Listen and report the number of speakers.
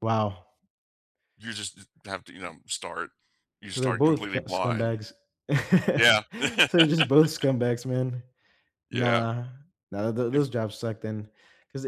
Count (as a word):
two